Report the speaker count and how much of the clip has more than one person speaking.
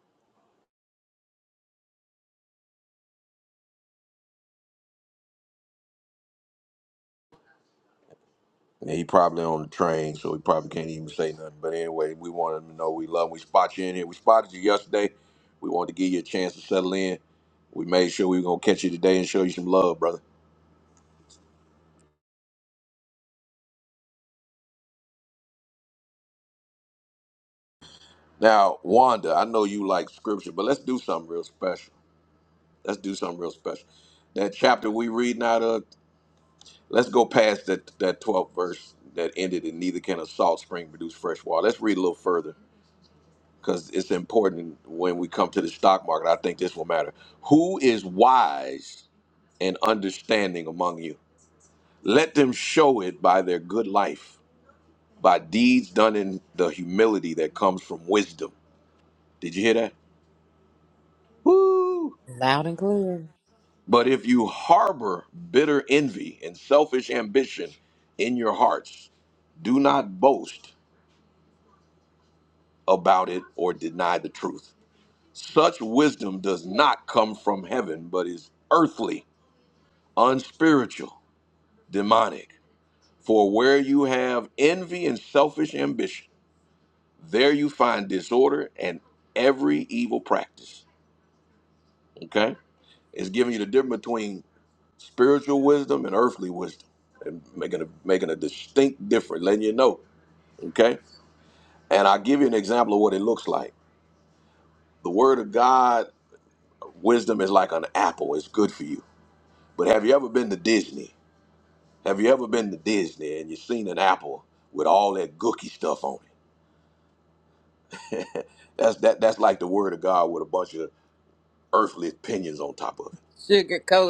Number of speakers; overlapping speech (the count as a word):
two, no overlap